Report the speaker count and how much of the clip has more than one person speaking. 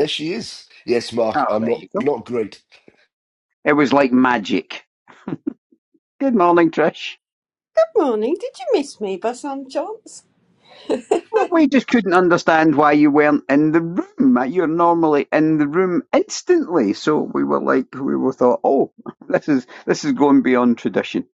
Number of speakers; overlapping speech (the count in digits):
3, about 3%